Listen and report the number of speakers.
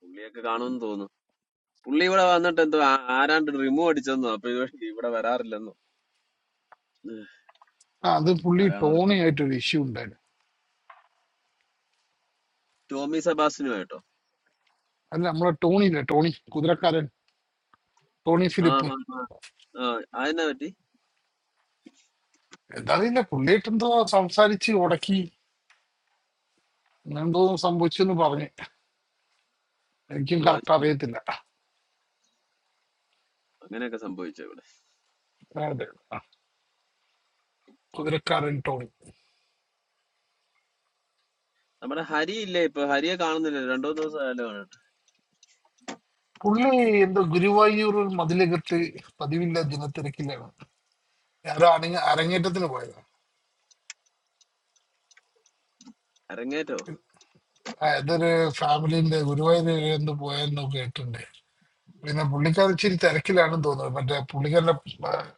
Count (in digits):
2